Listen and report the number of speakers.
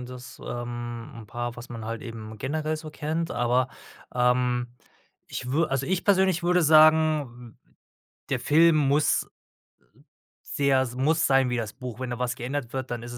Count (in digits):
1